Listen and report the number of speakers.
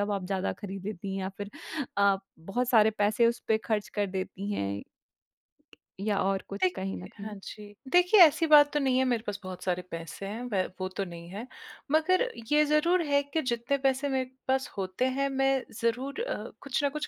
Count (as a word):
two